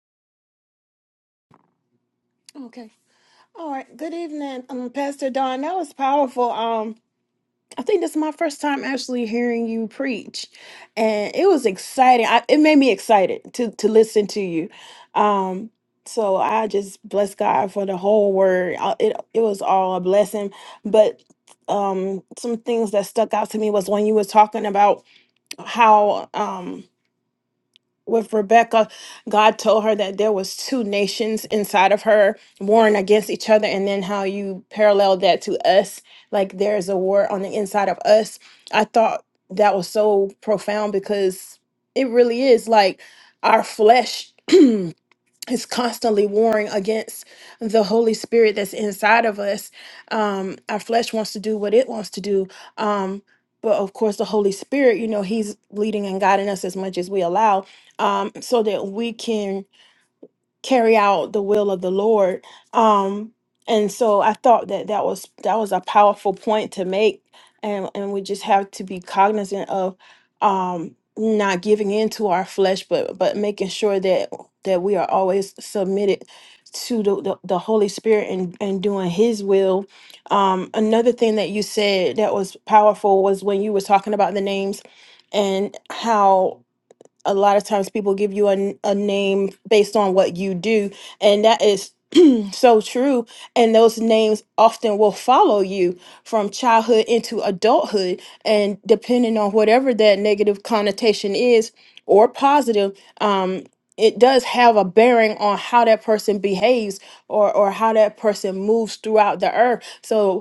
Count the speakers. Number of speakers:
one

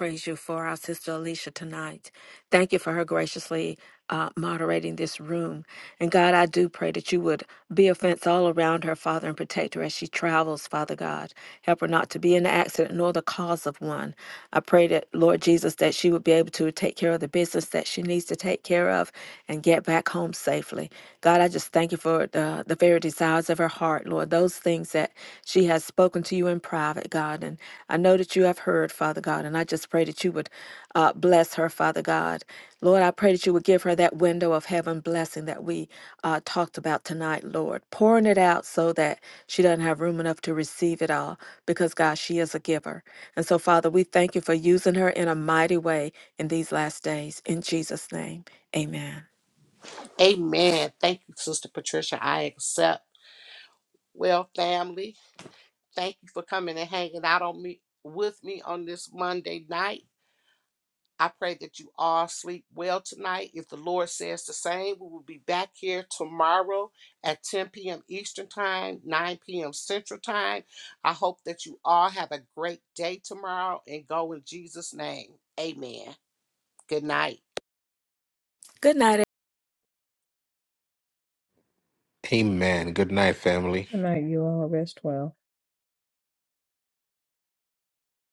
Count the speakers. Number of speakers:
four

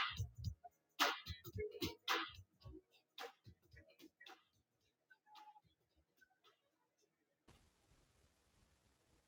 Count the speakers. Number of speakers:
zero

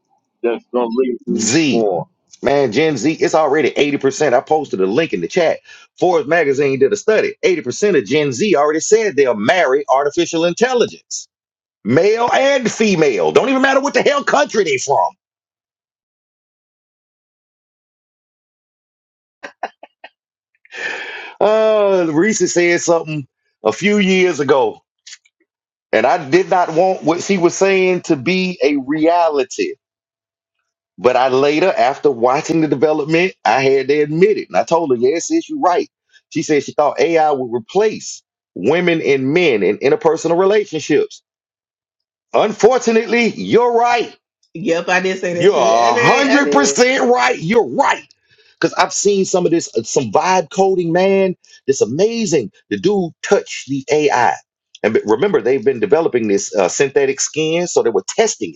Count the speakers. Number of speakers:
three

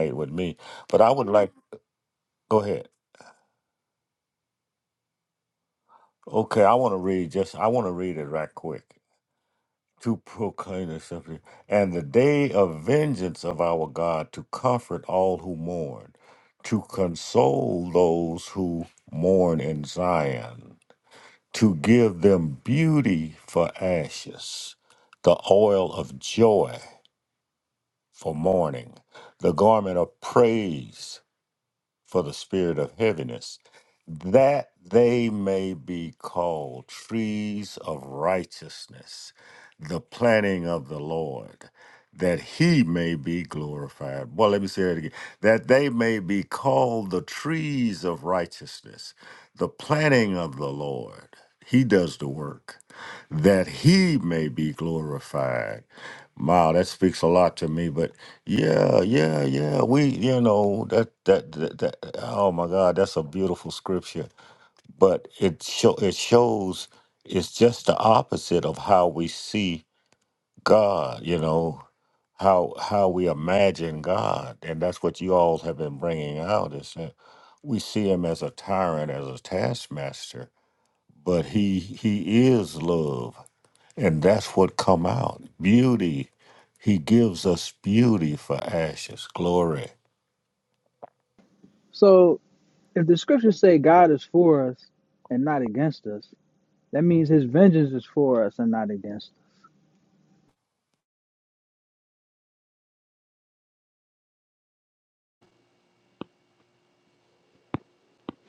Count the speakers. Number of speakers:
two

